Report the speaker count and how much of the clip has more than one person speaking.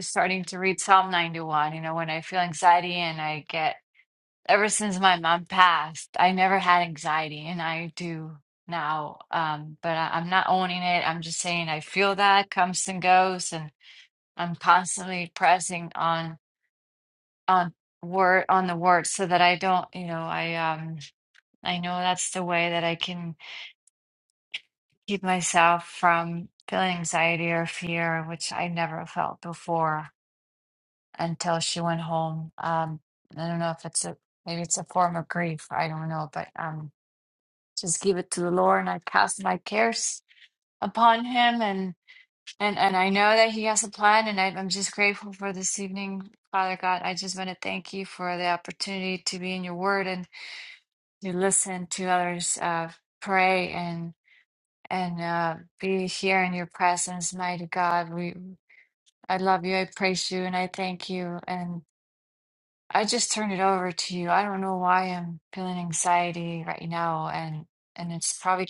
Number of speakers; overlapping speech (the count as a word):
one, no overlap